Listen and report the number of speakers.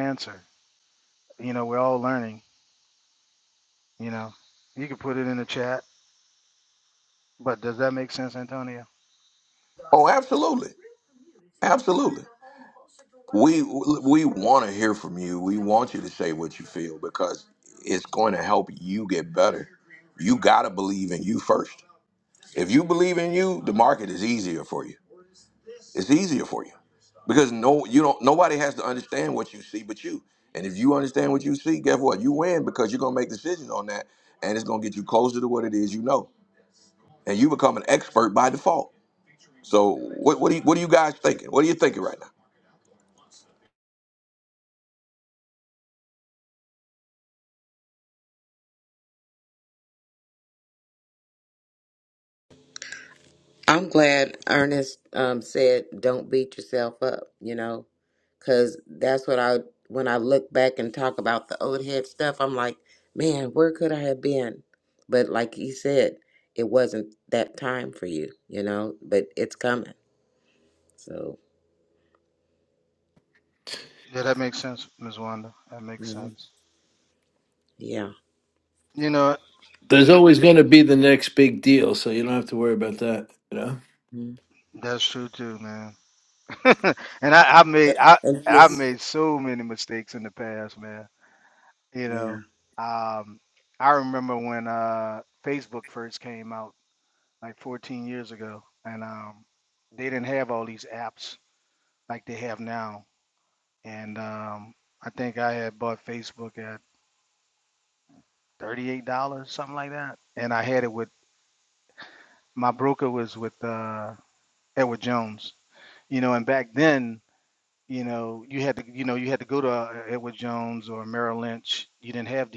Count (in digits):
4